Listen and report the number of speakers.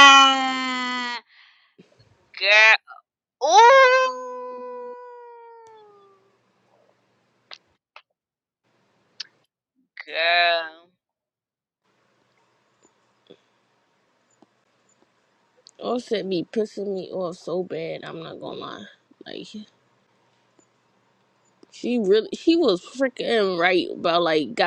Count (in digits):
2